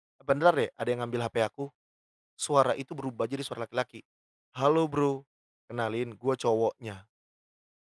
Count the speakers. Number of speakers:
1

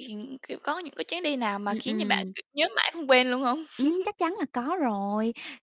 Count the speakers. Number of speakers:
2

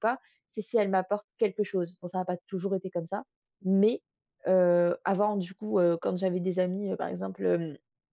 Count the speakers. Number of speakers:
1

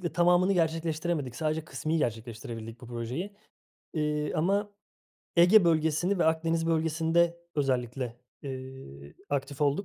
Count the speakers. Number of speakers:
1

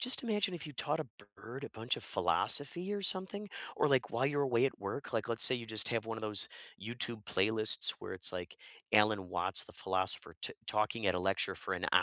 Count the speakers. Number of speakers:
1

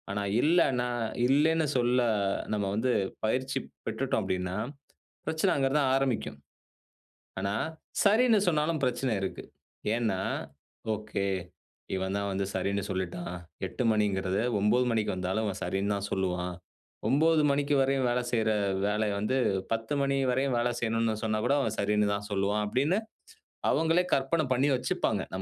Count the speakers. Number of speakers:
1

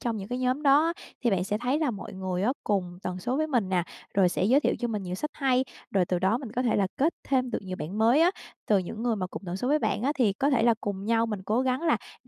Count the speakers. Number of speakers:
1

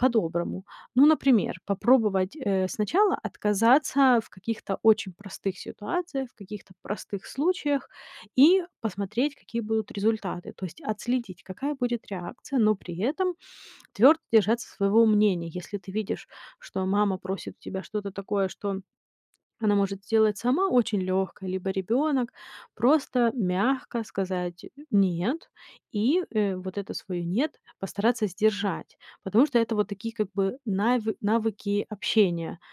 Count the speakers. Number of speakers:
1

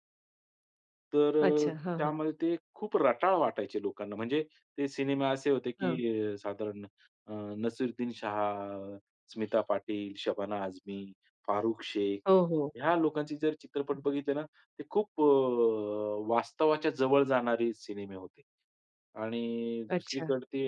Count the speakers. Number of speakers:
2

